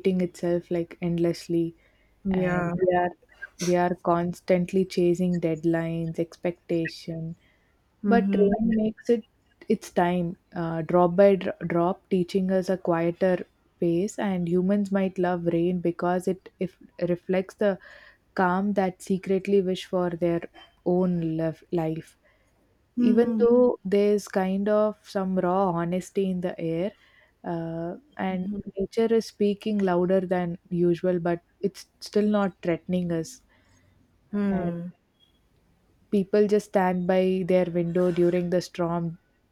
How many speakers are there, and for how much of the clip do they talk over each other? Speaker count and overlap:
2, about 4%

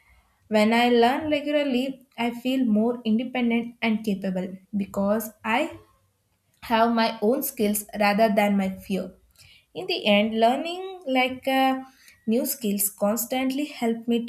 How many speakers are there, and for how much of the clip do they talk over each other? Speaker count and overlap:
1, no overlap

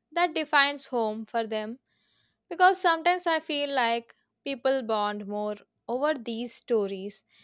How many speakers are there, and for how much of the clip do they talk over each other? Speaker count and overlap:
1, no overlap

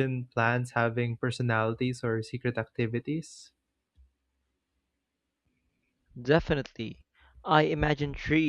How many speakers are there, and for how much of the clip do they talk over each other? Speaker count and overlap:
2, no overlap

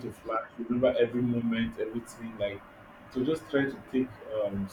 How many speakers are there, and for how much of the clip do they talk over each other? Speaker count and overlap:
1, no overlap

